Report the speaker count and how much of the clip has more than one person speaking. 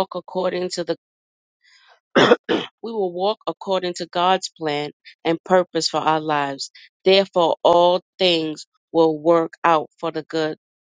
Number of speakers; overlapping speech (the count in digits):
1, no overlap